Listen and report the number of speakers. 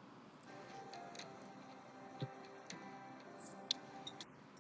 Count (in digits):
0